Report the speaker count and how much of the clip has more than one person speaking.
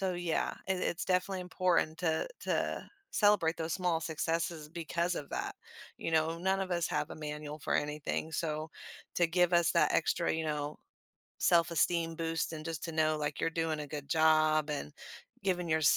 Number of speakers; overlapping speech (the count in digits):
1, no overlap